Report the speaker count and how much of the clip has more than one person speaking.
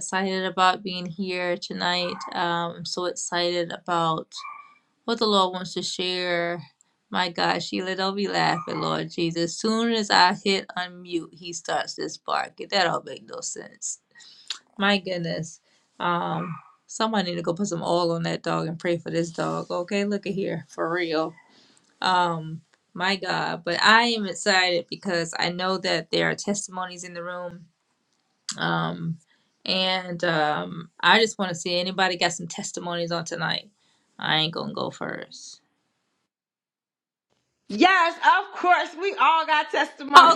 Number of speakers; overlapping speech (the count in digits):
2, about 1%